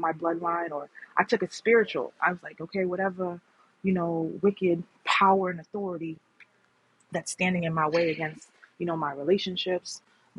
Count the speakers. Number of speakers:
1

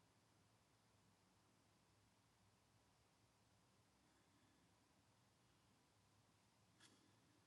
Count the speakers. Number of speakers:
0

